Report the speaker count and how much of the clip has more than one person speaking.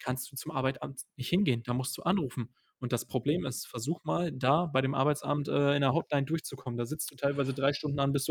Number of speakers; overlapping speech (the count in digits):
1, no overlap